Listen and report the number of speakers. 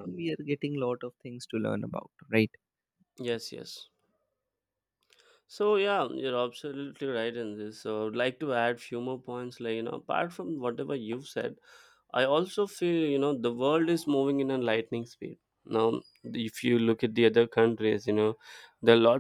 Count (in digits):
2